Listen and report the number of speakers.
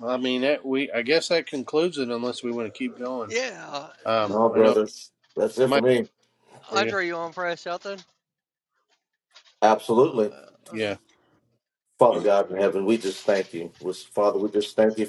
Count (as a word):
three